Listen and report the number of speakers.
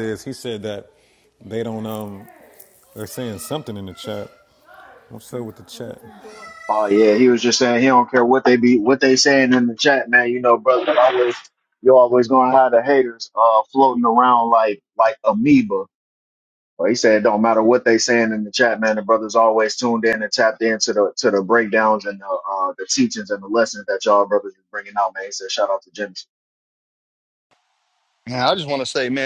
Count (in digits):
3